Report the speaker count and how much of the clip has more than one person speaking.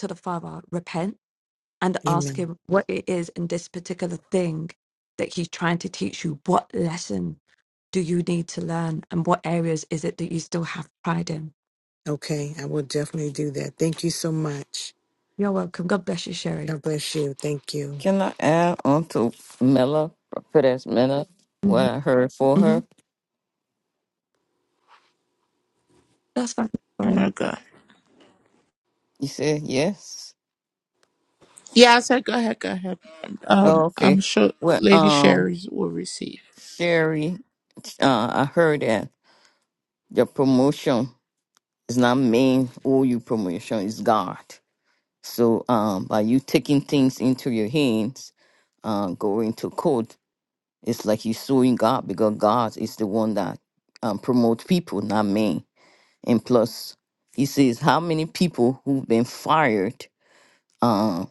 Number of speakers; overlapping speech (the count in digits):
4, about 4%